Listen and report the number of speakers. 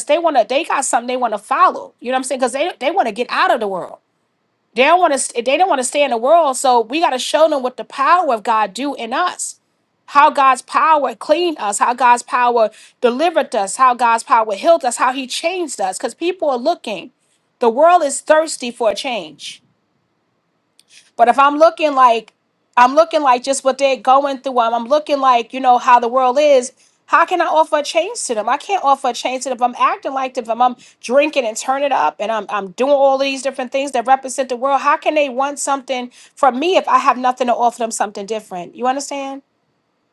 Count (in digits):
1